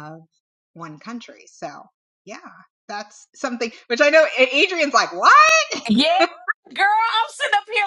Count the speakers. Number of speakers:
2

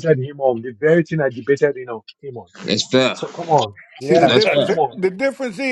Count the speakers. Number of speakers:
3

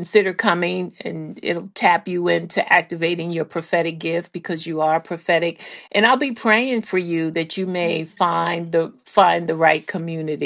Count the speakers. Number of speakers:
1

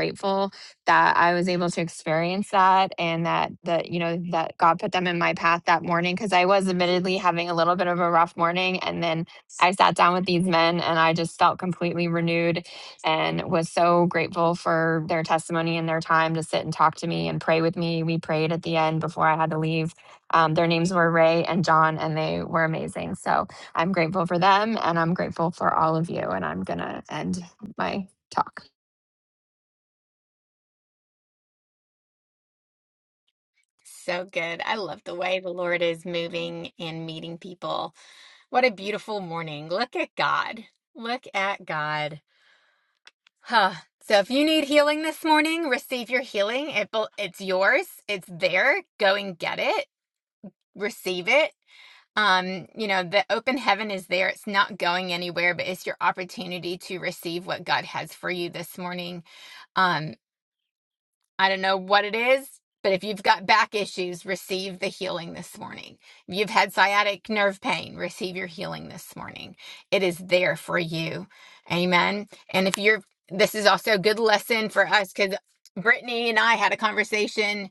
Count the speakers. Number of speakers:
2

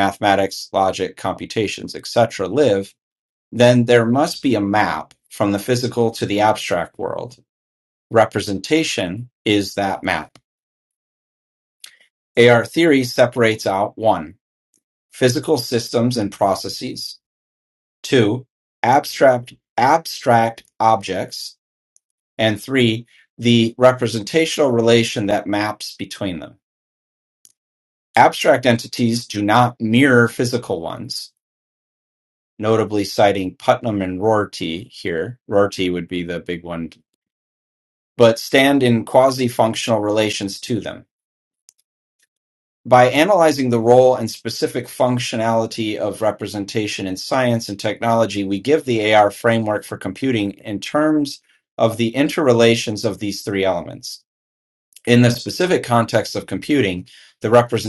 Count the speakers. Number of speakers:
1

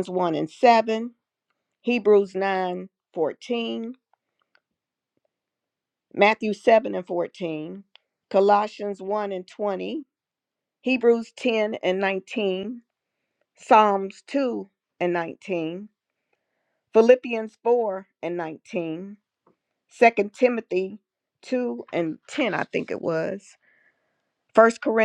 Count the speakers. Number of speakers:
1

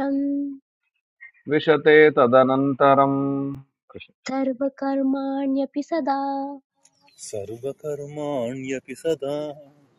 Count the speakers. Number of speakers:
3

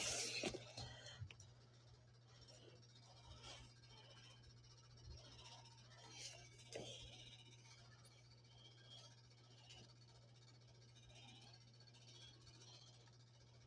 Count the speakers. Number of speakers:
0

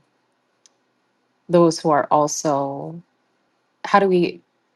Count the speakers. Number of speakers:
1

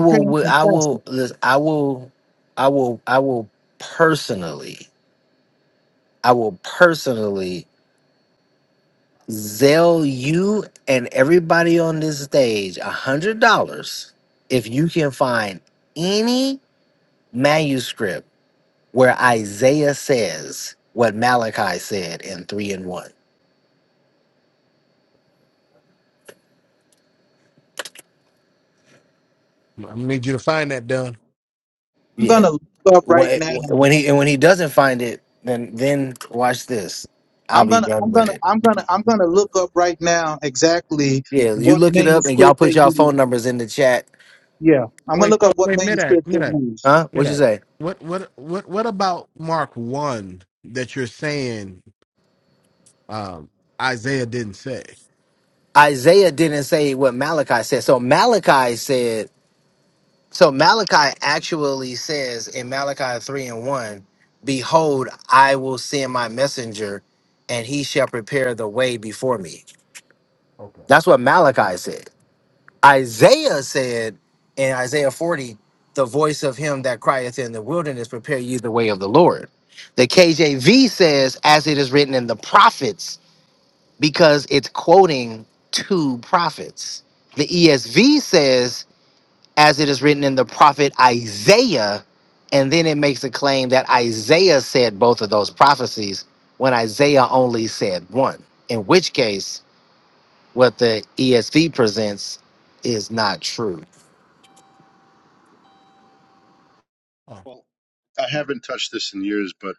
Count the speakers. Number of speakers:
4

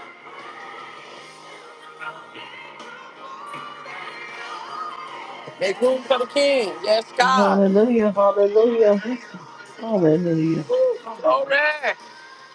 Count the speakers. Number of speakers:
2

